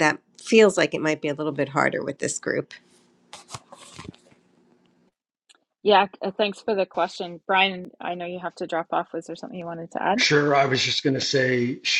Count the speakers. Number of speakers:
three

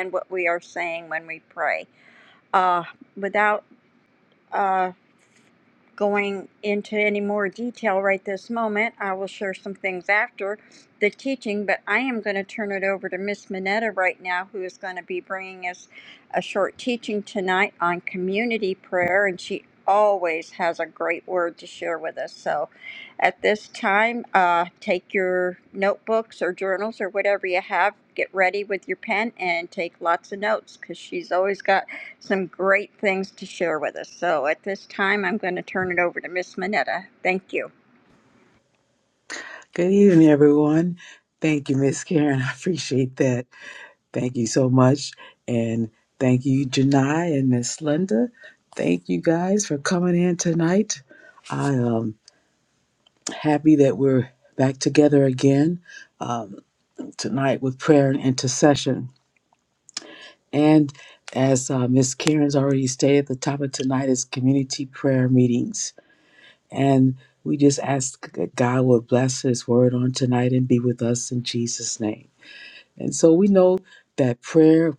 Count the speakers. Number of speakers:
two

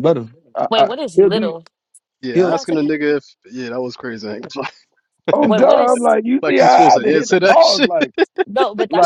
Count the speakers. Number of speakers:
three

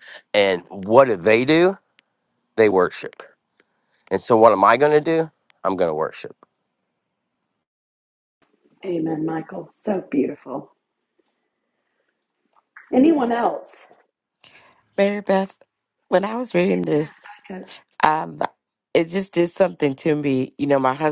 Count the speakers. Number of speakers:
three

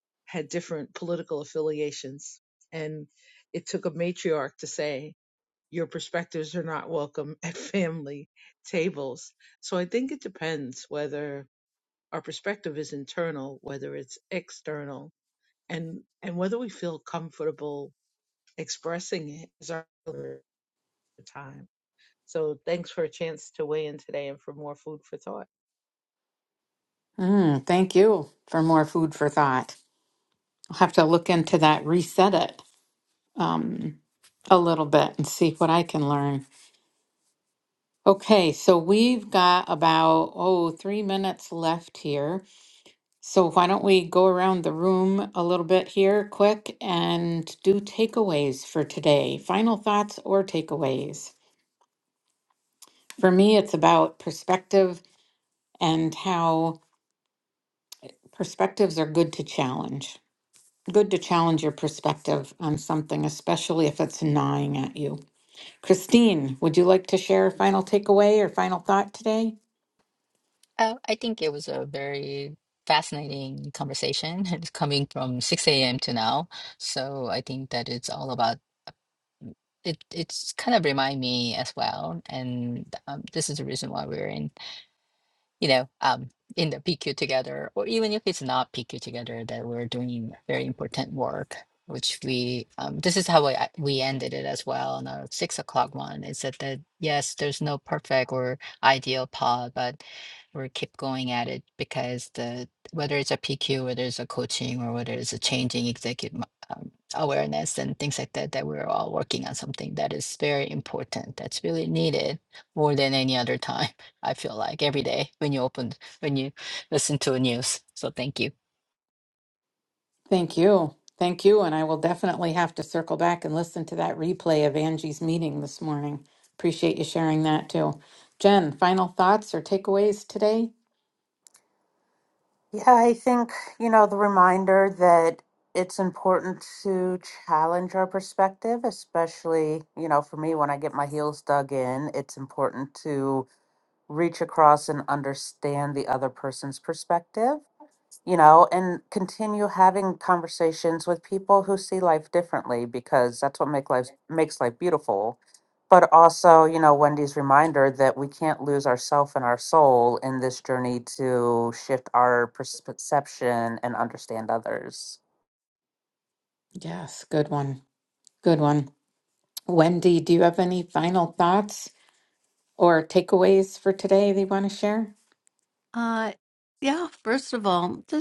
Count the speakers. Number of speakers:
five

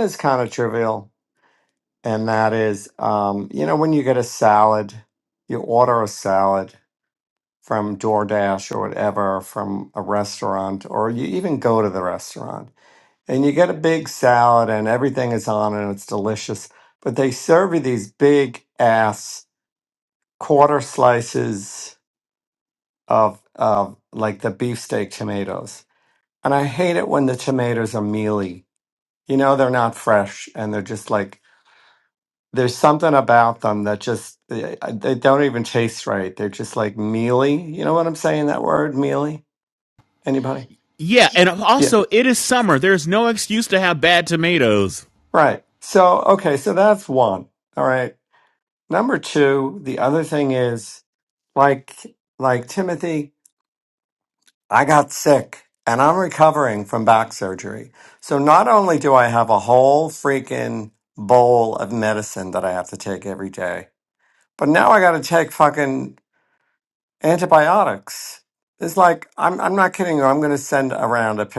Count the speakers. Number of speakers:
two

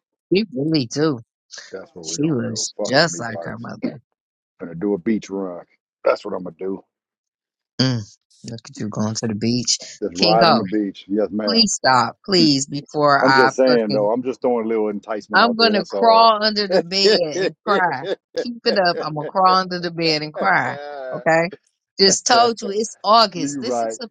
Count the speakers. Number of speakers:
two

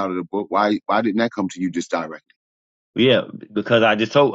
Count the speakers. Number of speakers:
two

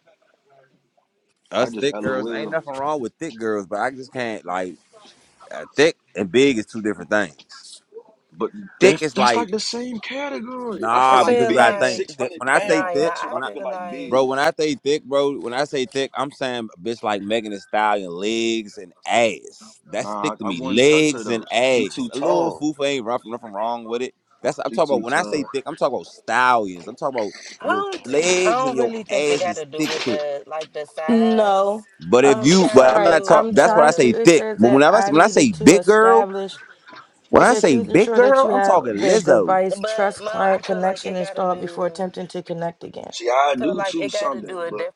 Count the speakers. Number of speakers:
four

